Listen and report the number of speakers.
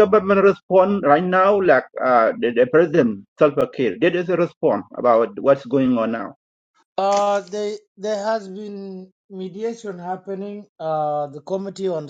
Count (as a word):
two